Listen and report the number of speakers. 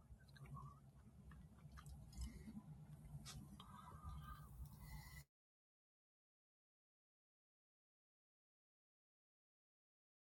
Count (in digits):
0